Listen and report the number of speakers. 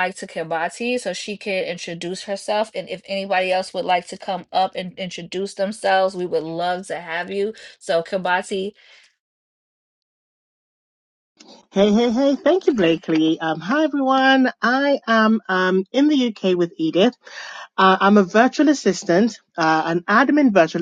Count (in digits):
2